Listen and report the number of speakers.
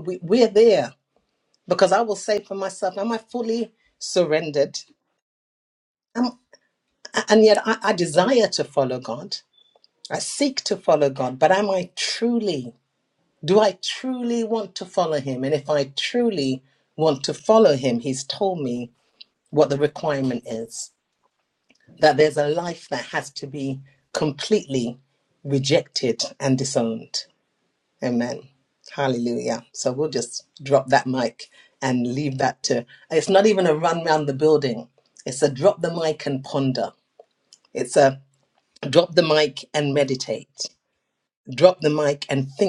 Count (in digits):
1